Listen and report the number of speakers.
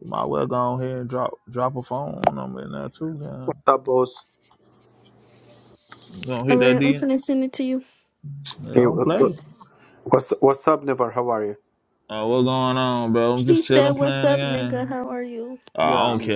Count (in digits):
3